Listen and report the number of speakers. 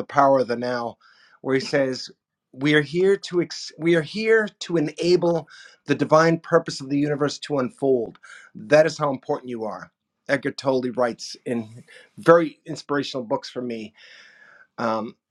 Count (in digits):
1